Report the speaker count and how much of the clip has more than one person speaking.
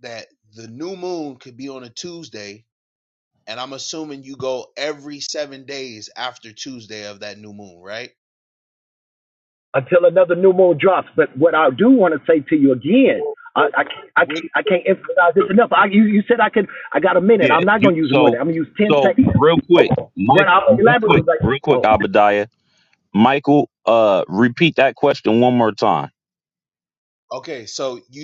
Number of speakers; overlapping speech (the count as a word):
three, about 13%